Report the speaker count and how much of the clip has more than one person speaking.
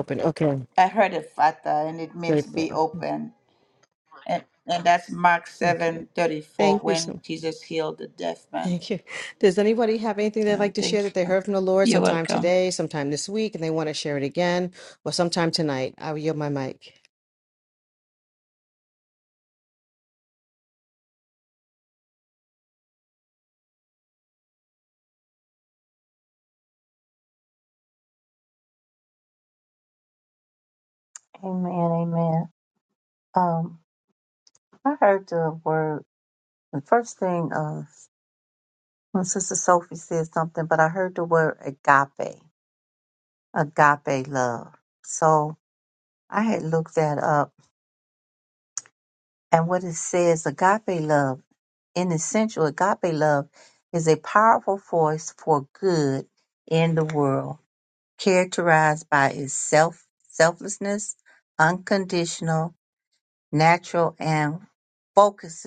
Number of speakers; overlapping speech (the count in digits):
3, about 5%